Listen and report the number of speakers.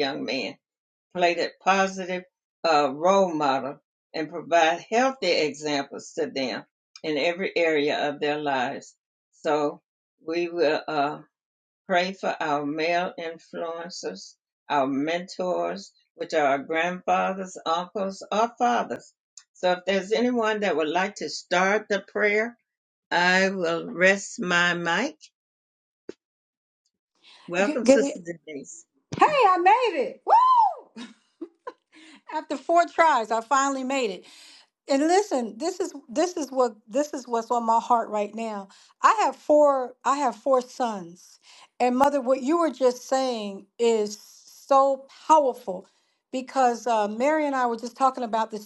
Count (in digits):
2